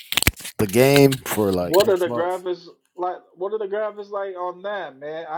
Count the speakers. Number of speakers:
2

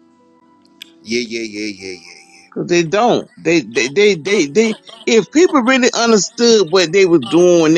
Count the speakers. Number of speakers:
2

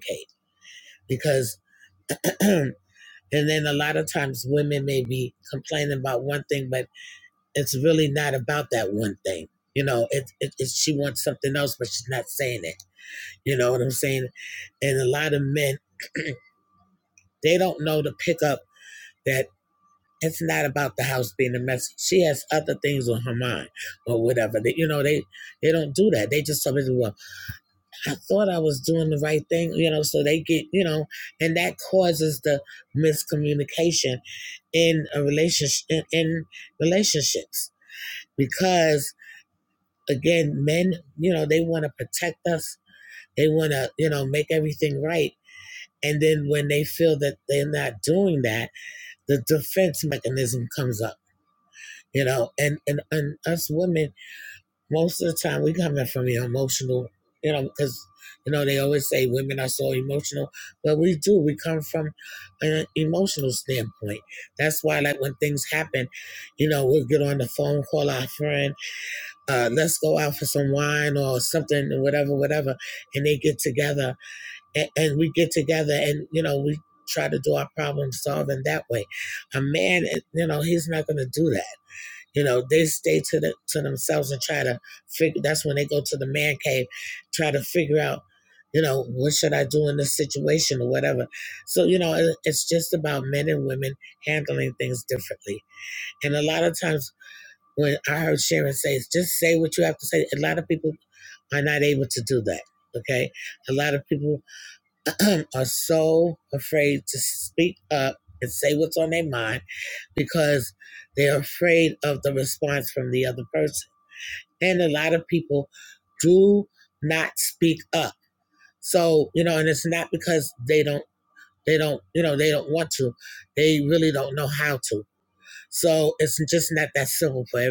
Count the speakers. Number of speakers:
1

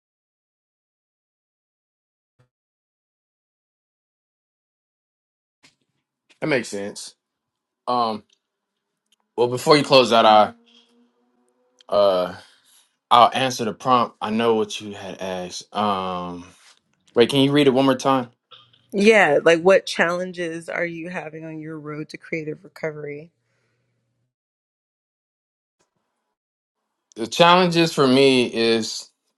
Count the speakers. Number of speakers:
2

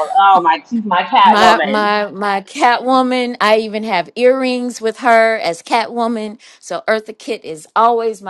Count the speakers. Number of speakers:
2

